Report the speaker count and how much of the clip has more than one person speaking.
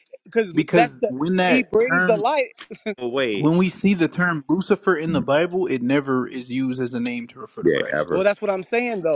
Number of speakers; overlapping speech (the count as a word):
three, about 22%